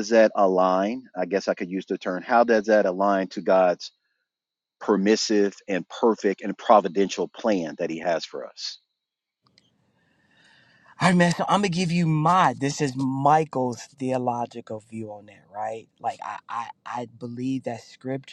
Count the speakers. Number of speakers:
two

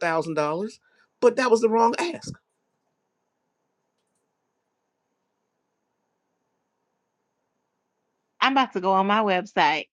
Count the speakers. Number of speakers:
two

